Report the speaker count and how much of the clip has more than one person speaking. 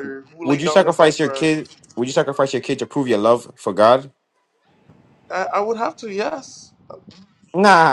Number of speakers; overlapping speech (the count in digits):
2, about 13%